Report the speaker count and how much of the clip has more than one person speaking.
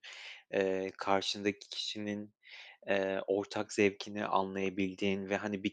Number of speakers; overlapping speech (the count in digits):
1, no overlap